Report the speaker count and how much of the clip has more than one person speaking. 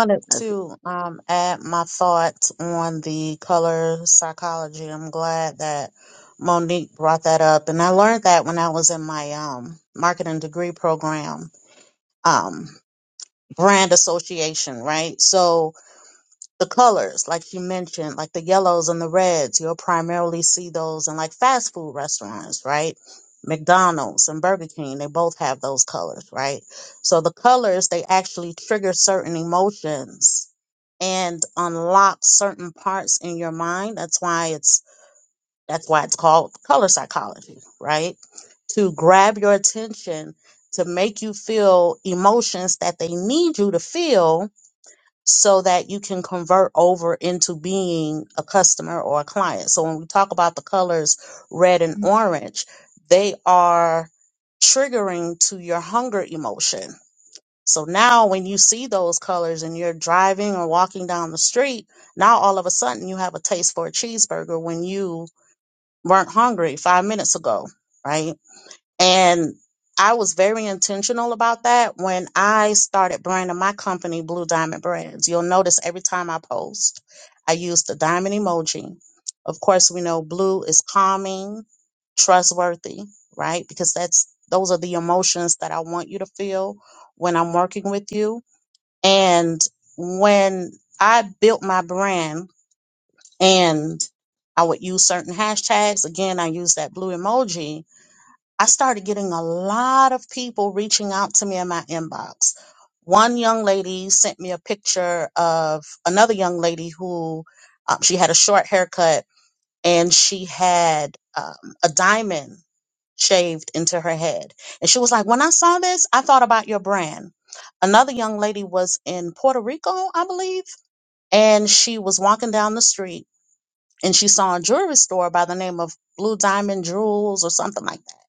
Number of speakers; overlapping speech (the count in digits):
1, no overlap